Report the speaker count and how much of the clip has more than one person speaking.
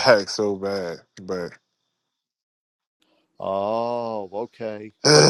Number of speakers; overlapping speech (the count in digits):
2, about 5%